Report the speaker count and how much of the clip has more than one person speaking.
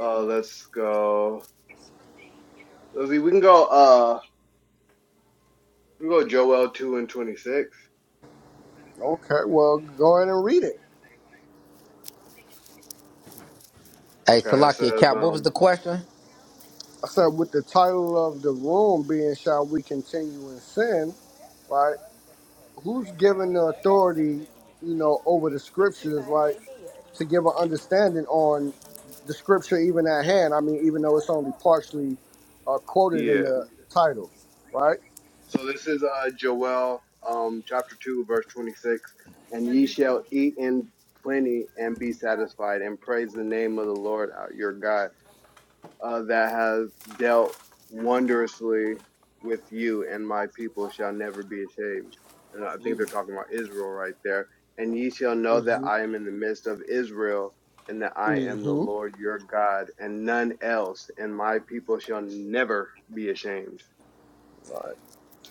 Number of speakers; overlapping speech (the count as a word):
three, about 4%